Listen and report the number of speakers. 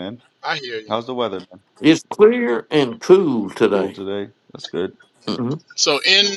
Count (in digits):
3